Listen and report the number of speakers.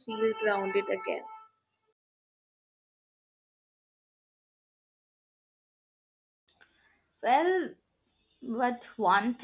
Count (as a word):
two